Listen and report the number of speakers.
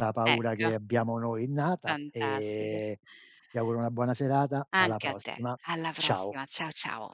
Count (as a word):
two